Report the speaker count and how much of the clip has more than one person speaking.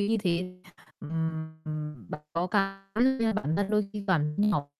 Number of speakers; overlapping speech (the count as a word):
one, no overlap